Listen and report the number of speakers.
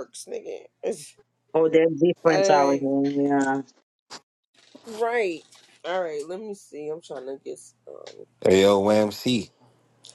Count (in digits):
3